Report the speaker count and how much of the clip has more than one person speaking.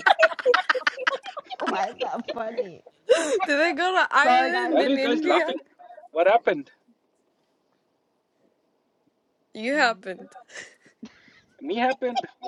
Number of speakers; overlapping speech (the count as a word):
three, about 12%